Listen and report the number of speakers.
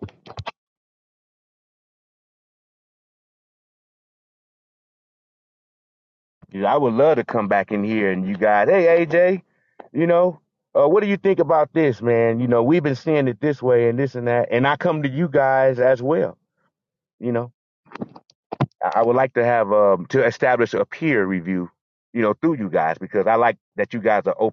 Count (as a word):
one